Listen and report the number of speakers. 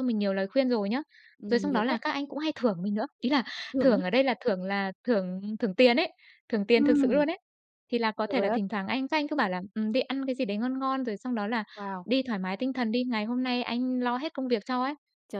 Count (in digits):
2